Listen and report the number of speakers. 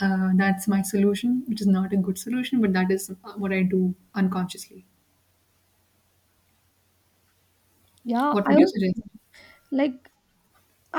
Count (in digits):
2